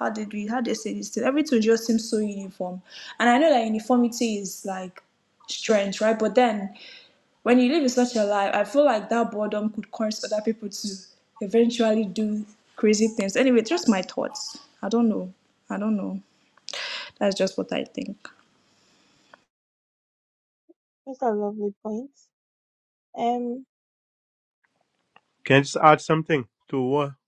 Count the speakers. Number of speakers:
3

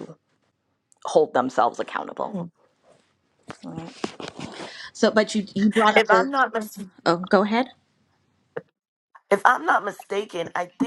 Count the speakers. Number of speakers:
2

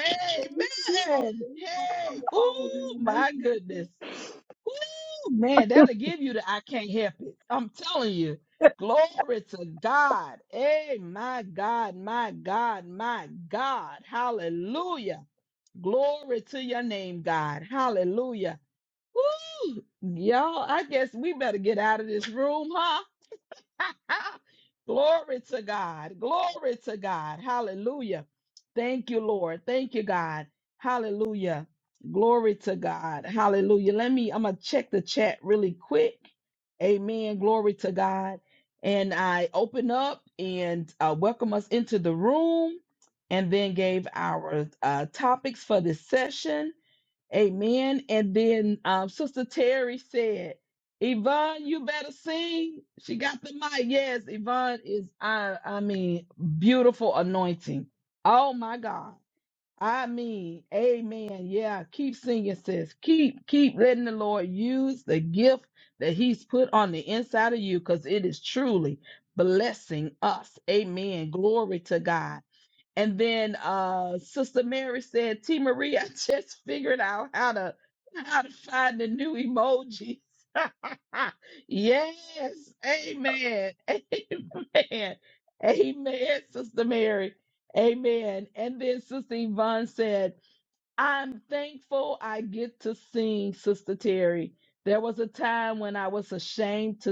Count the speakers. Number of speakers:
1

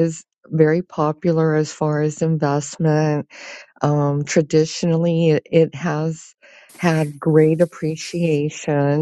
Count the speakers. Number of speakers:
1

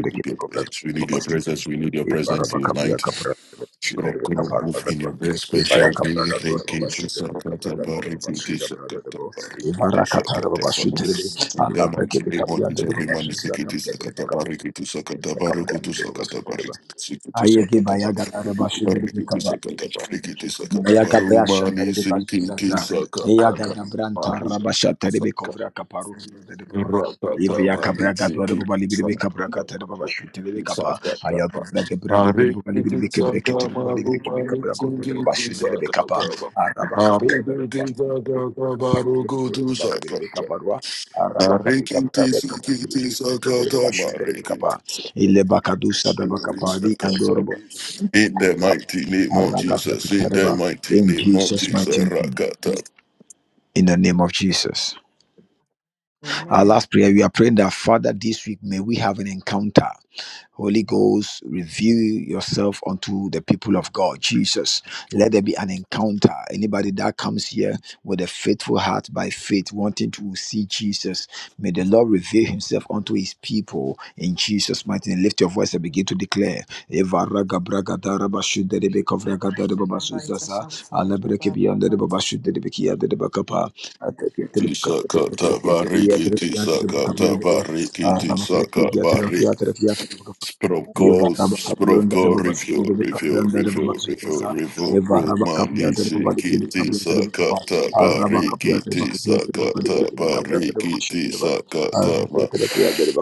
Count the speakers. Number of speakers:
2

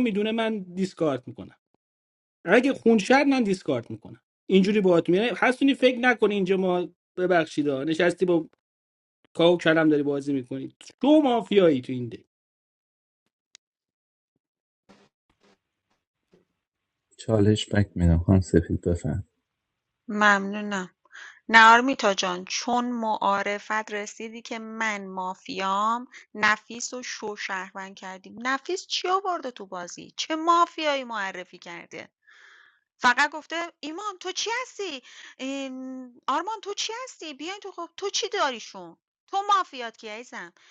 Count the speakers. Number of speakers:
3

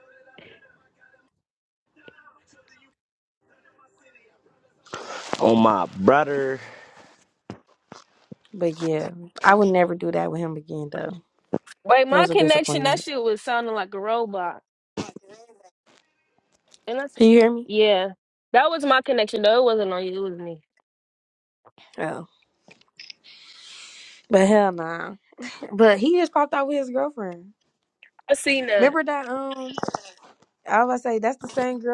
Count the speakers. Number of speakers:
3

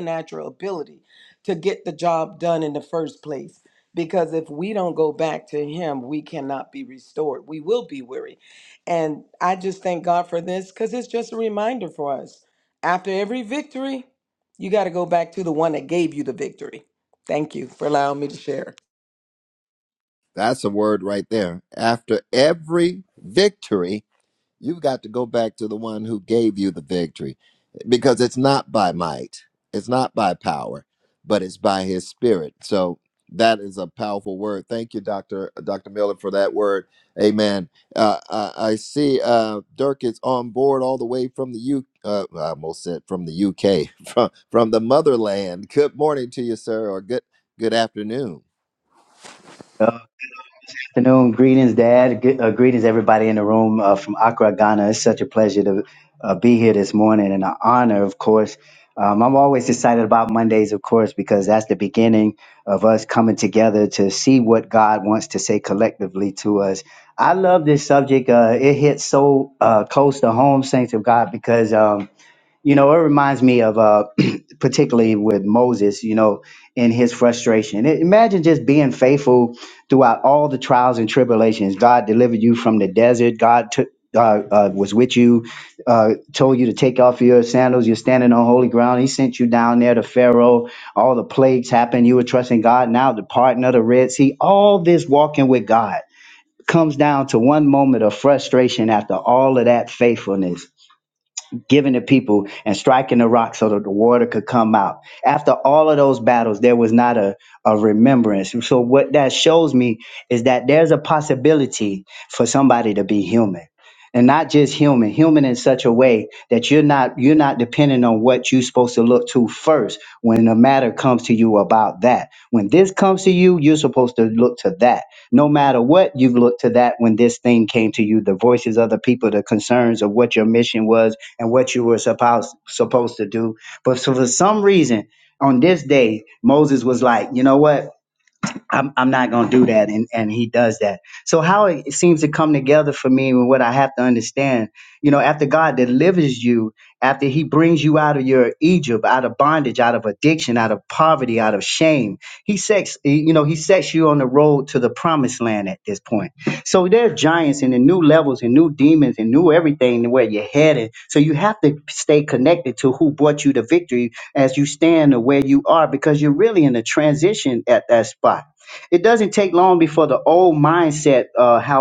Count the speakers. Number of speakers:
3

